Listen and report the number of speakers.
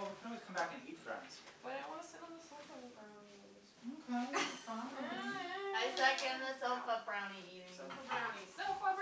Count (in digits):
3